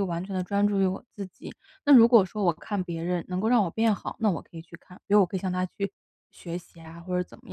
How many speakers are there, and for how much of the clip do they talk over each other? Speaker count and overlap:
one, no overlap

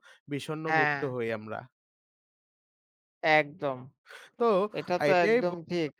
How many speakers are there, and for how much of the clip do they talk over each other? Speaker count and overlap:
two, about 22%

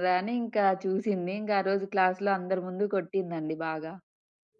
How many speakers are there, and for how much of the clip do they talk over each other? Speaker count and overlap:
one, no overlap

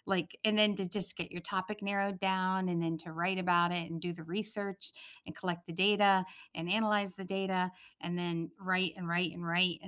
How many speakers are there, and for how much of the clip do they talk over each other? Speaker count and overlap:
one, no overlap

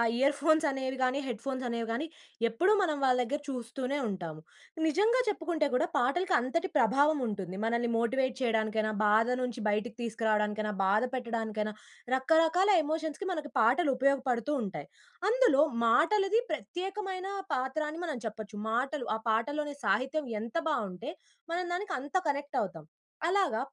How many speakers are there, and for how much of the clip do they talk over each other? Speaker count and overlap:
one, no overlap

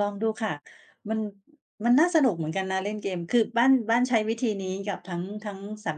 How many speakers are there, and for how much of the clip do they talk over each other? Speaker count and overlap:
one, no overlap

